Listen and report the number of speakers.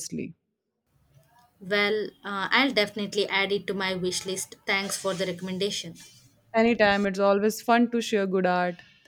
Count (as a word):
two